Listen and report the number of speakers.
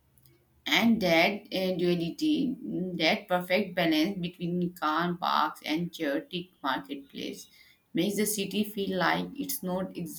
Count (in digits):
1